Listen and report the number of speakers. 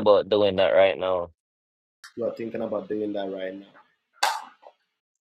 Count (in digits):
2